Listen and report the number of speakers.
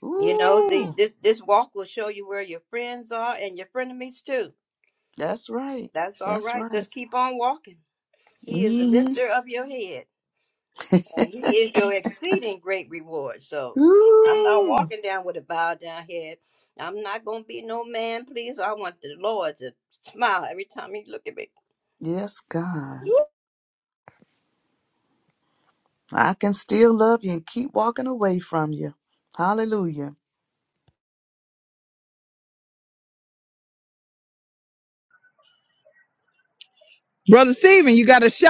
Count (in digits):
3